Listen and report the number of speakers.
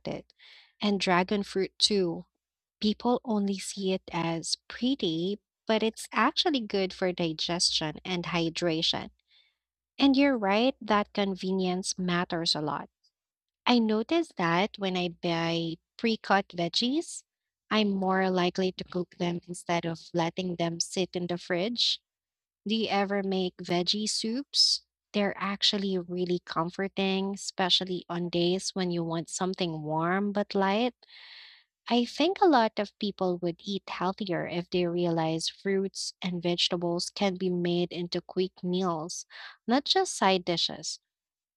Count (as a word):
one